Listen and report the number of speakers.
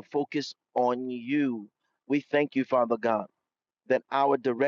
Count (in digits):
1